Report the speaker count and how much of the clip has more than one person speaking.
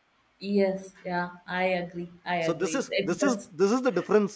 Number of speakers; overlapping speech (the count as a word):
two, about 22%